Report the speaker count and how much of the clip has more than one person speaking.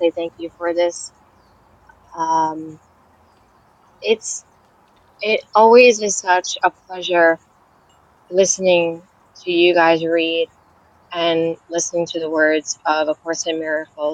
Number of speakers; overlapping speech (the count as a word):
one, no overlap